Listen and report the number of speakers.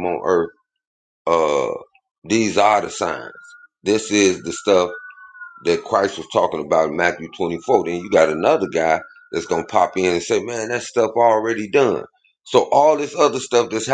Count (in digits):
1